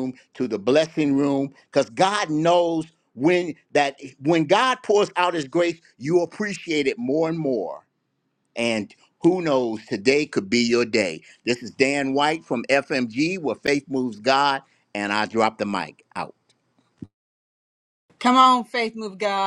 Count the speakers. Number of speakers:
two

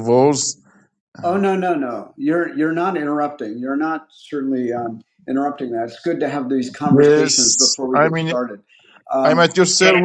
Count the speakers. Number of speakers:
two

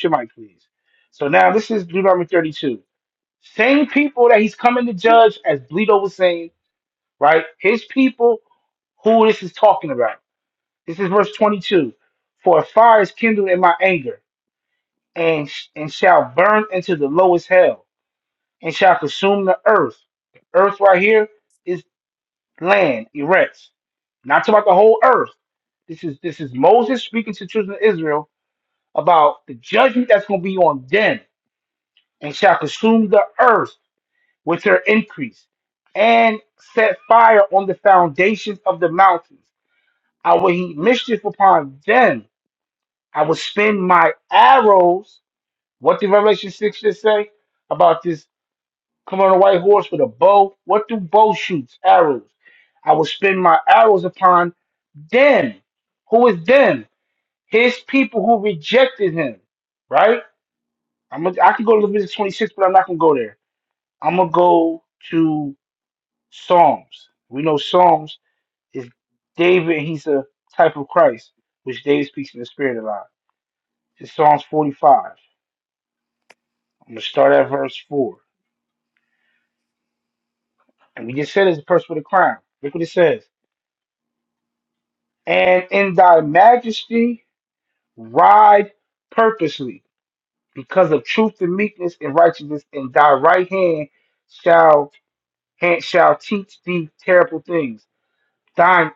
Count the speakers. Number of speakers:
one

